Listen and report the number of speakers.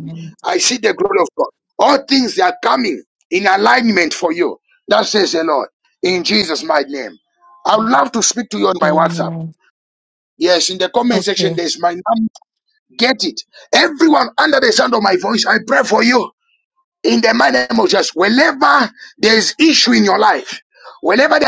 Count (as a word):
two